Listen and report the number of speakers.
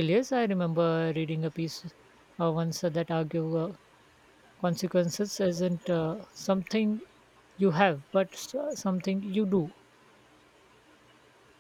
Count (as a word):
one